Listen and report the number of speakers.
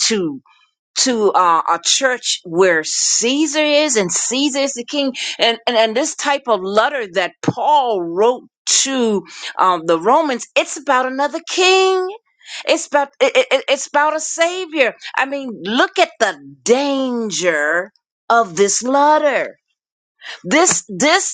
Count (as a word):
one